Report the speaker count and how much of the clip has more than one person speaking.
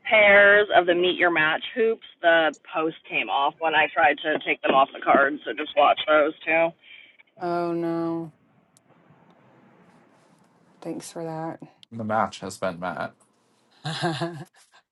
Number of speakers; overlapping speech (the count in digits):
3, no overlap